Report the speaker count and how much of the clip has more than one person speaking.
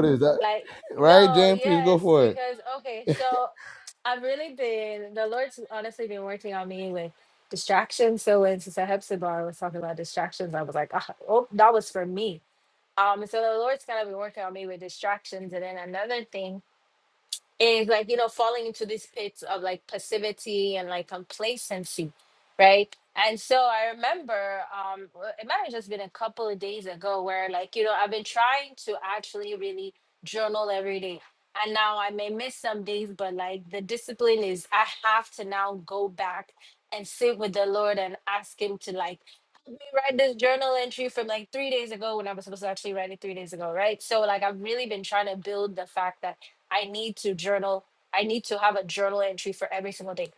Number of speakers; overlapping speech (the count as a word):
two, about 3%